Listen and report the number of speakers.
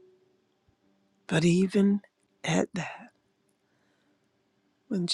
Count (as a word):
one